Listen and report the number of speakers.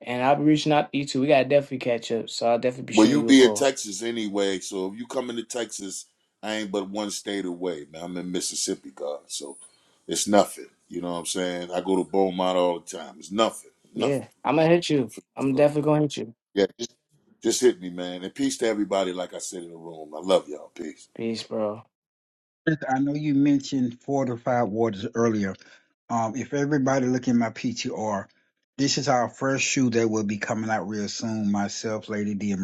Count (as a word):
three